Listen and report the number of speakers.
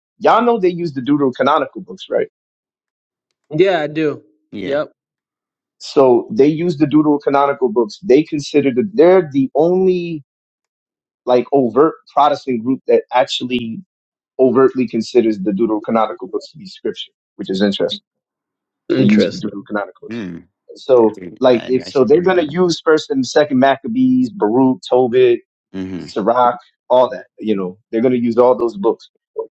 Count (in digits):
3